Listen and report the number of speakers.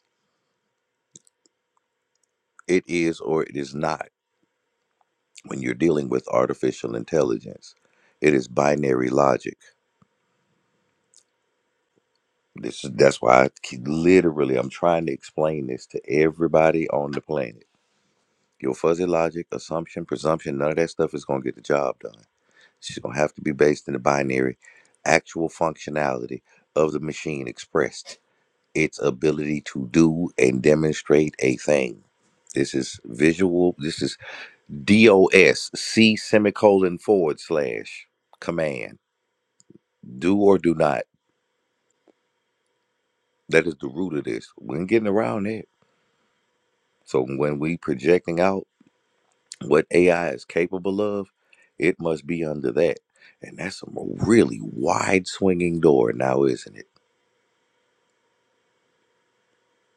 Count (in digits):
1